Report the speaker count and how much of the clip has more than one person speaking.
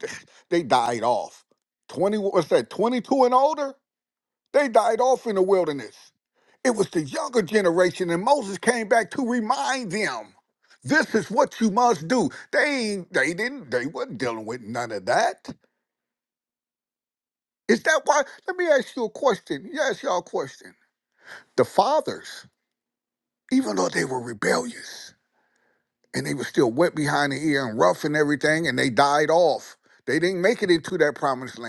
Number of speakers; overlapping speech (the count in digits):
1, no overlap